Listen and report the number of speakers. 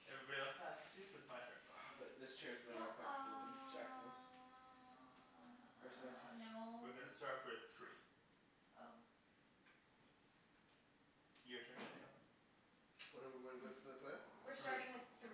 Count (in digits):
4